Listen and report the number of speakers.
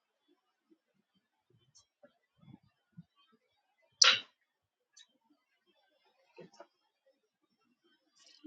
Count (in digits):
0